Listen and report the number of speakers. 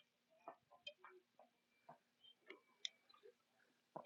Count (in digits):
0